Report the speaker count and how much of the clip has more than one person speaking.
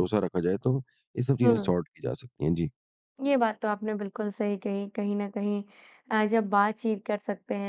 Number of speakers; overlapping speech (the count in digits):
2, about 4%